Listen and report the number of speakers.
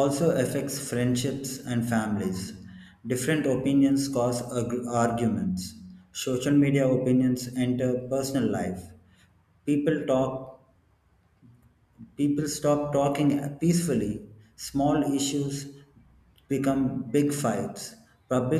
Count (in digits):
1